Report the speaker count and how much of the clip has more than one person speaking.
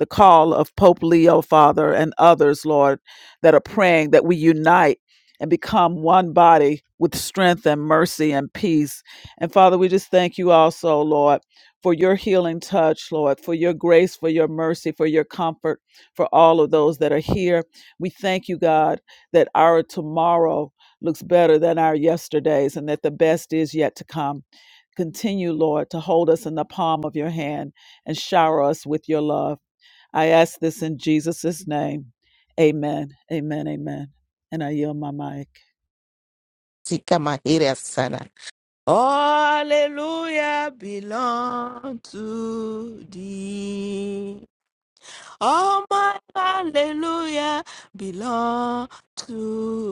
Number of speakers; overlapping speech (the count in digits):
2, no overlap